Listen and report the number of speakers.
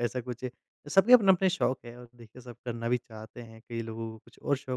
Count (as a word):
one